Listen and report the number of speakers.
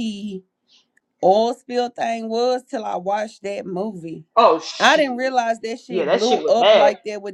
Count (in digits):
2